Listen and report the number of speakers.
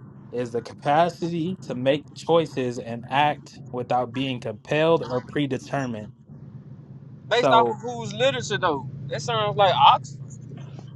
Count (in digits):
2